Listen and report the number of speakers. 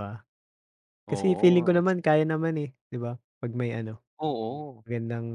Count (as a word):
two